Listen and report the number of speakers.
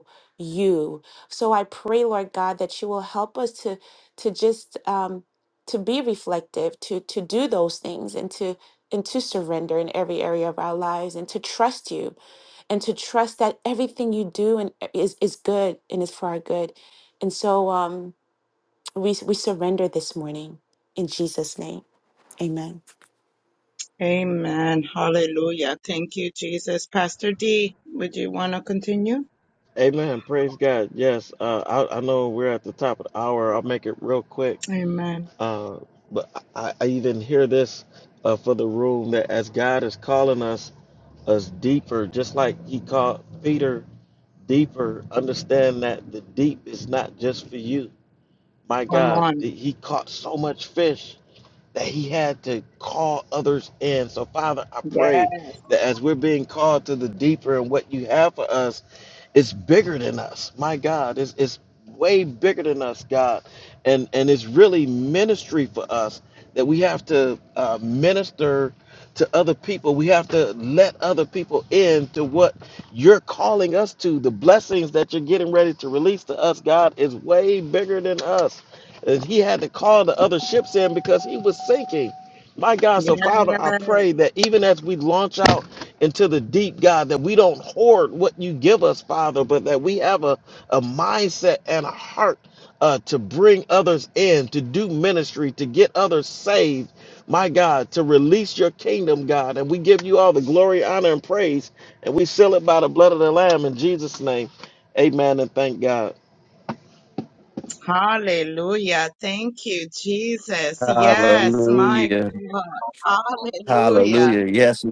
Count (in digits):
4